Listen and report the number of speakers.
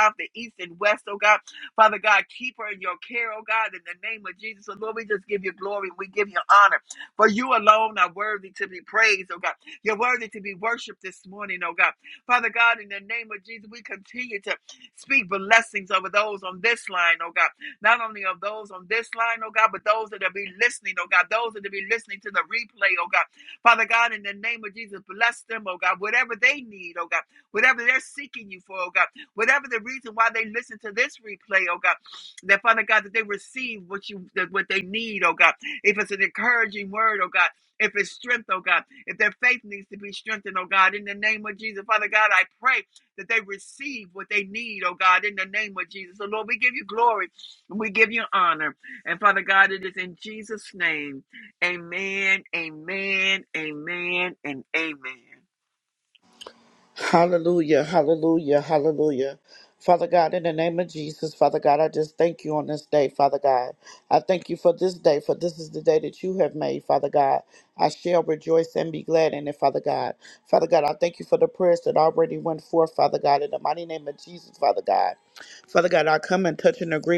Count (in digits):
2